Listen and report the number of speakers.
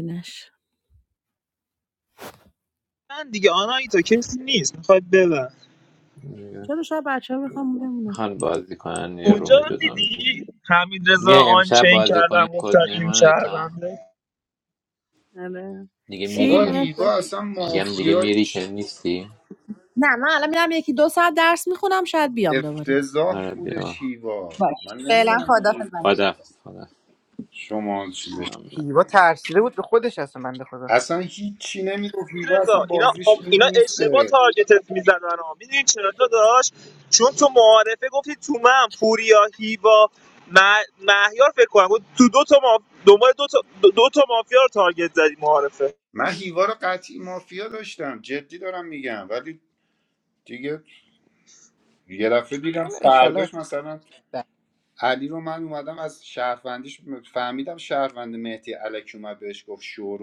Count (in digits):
5